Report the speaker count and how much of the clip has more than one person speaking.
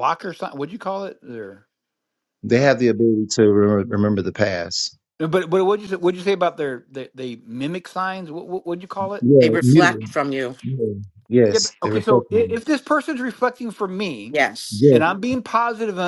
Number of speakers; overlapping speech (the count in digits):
3, about 13%